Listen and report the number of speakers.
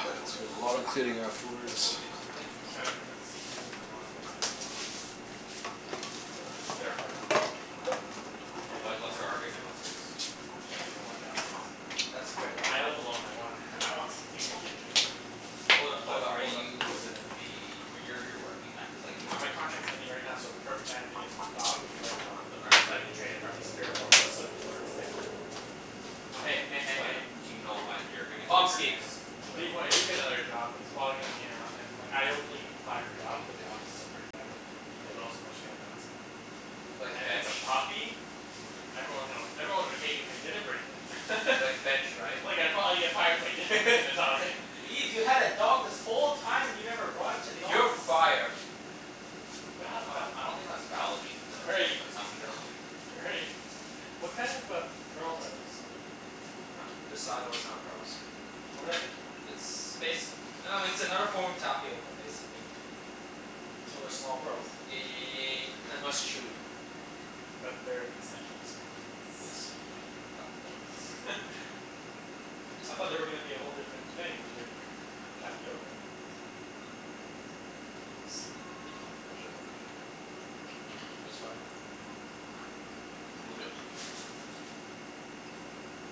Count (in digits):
4